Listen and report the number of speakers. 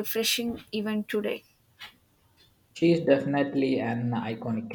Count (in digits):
2